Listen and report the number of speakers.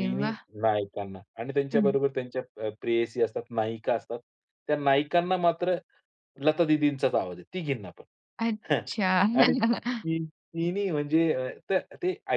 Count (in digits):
2